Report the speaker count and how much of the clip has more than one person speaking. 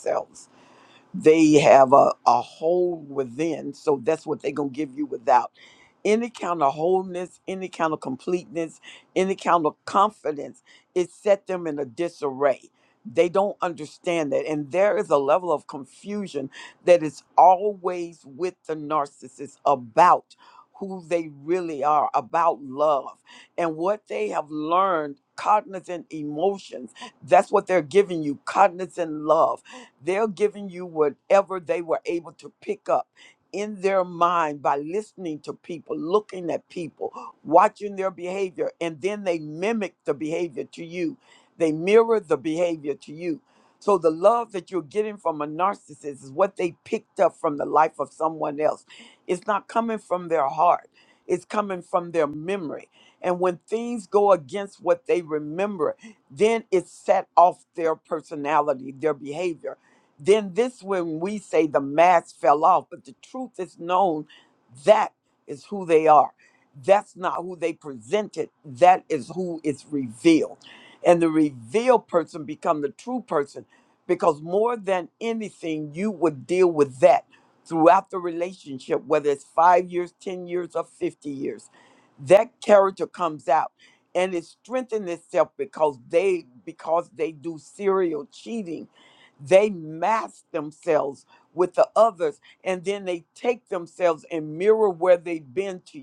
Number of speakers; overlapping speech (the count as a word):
one, no overlap